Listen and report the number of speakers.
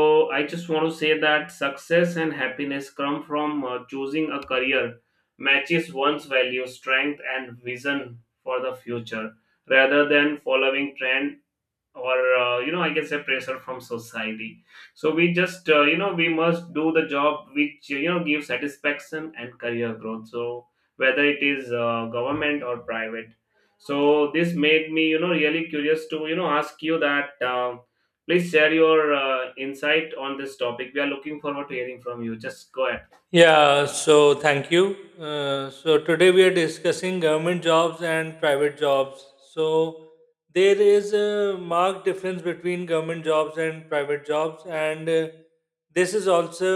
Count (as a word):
two